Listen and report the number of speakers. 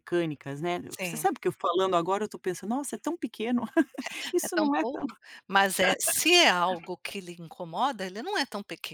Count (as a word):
two